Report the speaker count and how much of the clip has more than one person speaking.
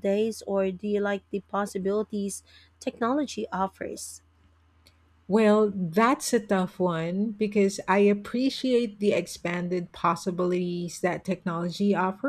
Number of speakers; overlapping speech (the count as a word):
two, no overlap